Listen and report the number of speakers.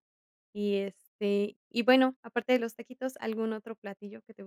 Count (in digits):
1